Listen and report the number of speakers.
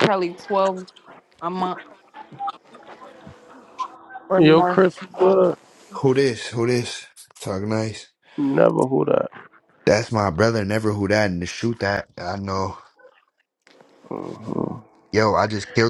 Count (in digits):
3